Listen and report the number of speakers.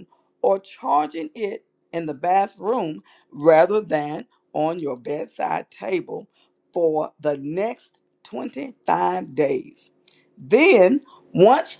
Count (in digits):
1